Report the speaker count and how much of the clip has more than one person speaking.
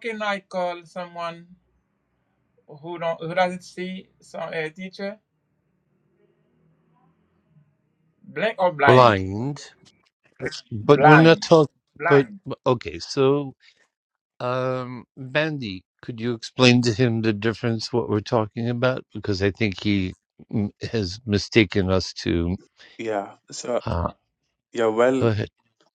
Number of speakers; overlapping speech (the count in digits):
3, about 4%